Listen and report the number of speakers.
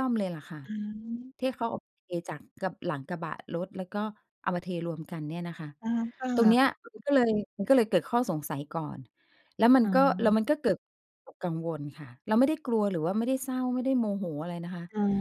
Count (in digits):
2